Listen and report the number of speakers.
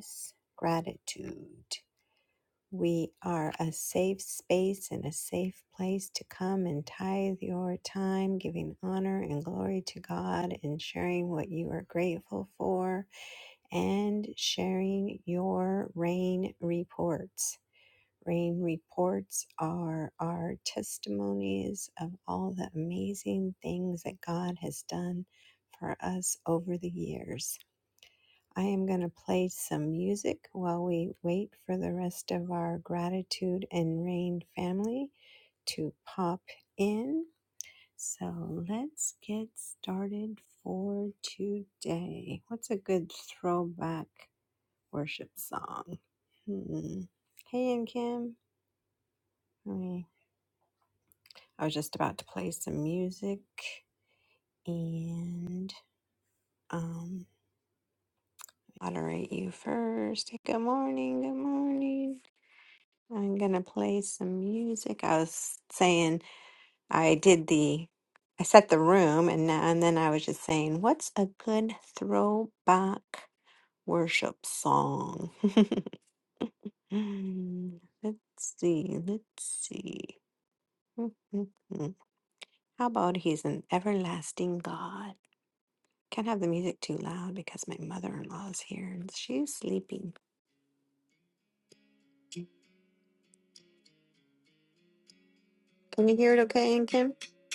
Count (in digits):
1